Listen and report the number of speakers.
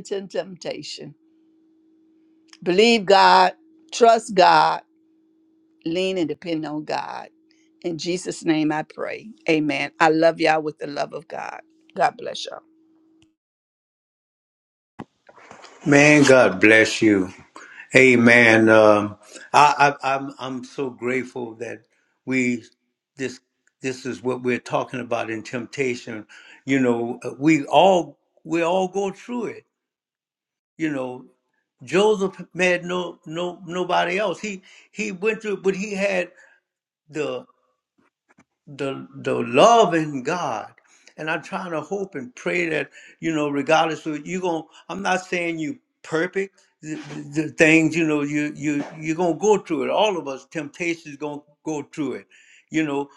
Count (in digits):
2